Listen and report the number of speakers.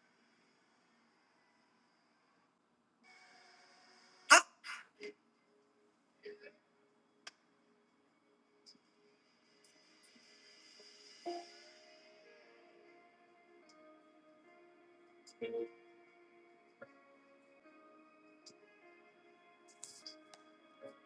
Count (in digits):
0